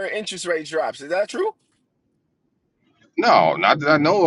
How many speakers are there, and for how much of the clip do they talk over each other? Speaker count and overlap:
2, no overlap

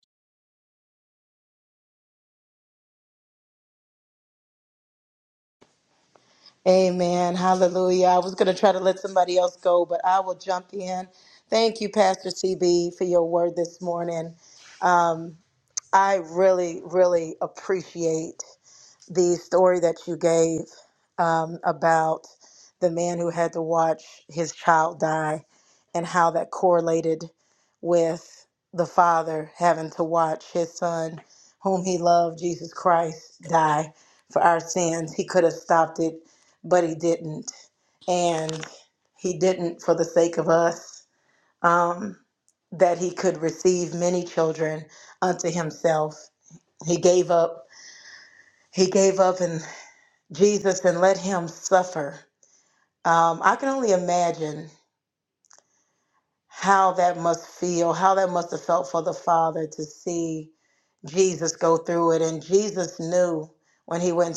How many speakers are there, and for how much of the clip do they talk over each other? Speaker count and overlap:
1, no overlap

